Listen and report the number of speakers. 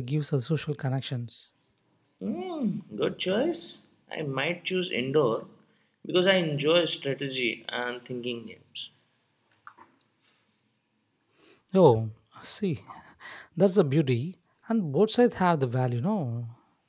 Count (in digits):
2